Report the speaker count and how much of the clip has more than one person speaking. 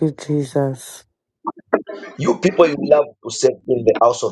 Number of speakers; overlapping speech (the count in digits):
2, no overlap